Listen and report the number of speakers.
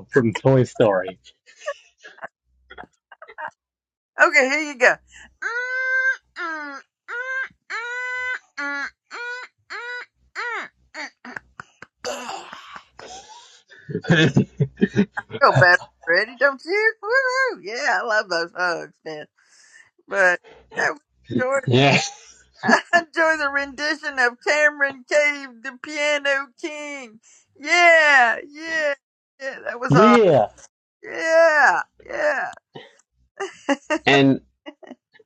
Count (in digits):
2